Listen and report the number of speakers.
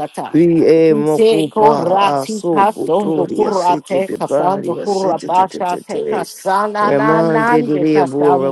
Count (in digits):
2